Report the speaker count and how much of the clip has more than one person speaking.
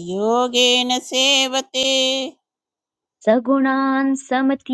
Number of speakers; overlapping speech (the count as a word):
two, no overlap